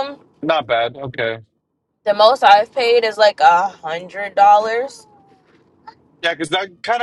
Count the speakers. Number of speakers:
2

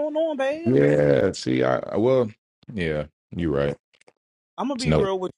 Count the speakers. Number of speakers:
2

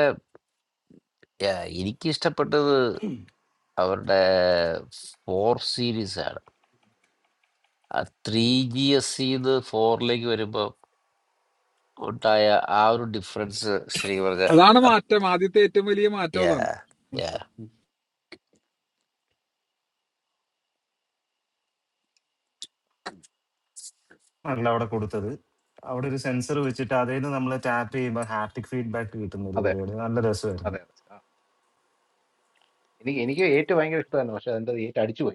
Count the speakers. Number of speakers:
4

